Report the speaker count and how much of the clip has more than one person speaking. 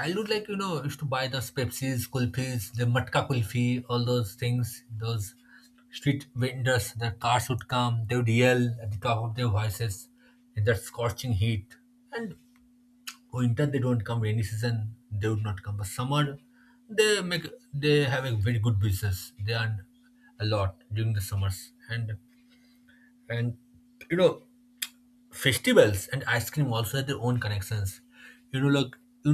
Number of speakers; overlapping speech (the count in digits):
1, no overlap